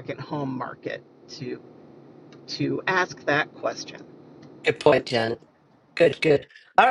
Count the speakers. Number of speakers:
2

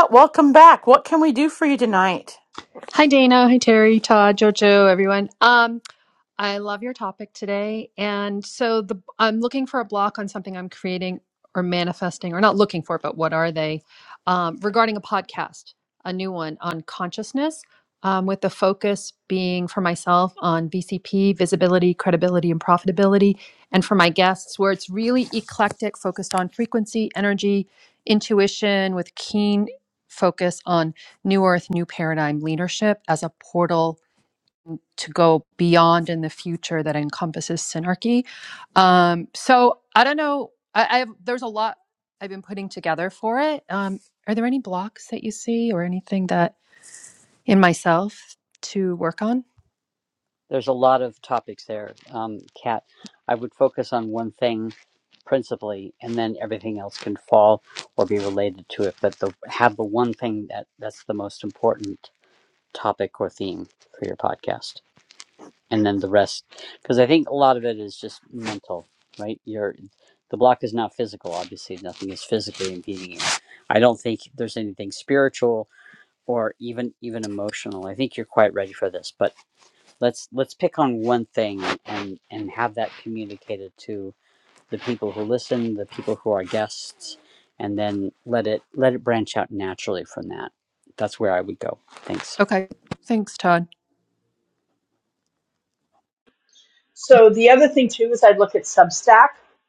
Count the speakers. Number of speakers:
4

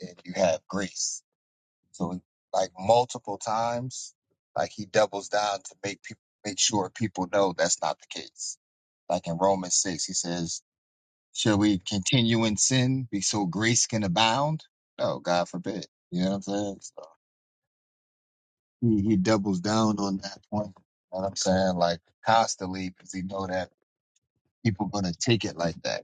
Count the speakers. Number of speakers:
1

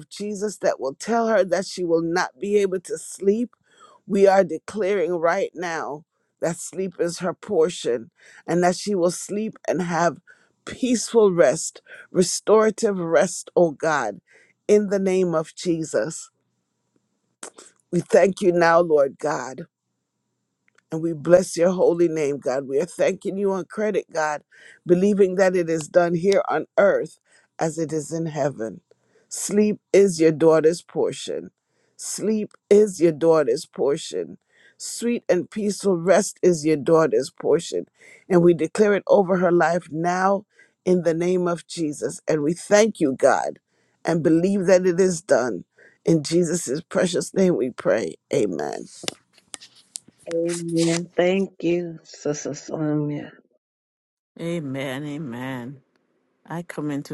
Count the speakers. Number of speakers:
3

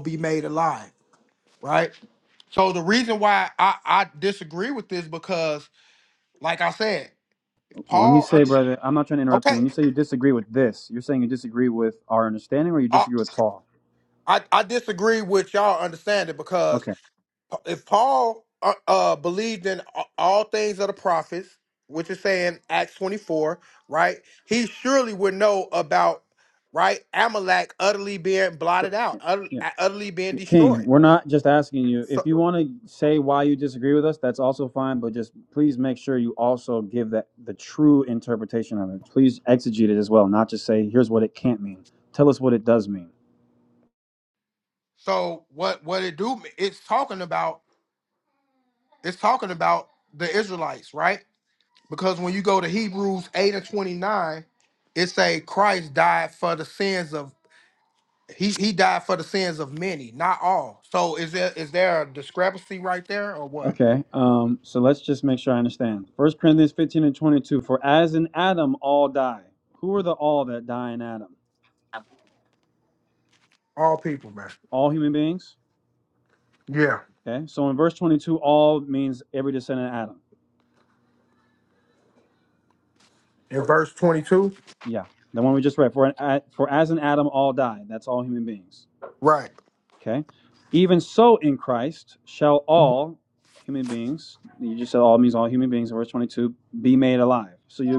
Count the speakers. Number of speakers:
2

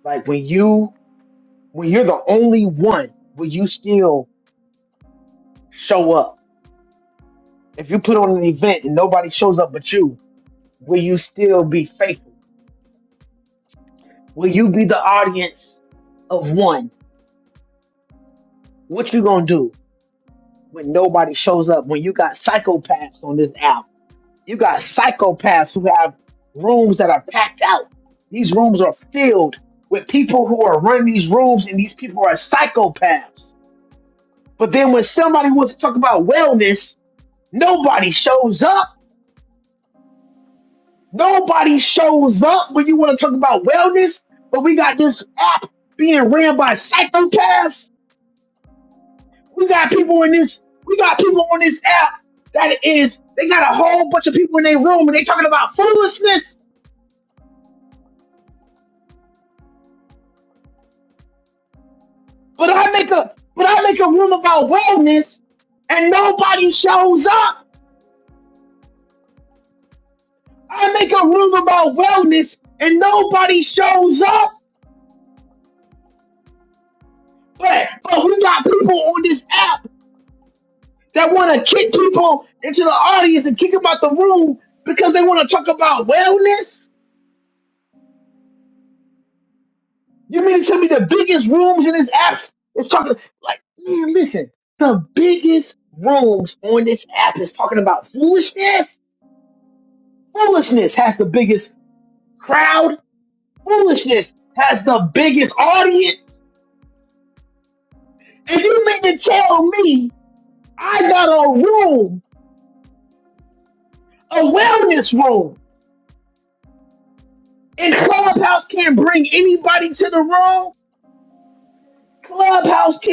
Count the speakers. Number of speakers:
1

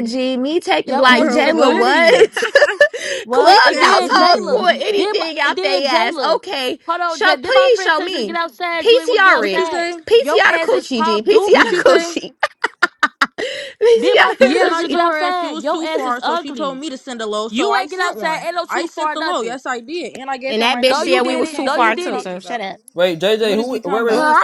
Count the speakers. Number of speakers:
4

